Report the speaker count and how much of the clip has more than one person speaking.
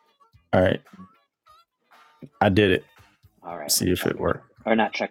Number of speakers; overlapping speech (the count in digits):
2, about 11%